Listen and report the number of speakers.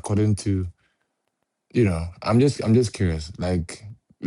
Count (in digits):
1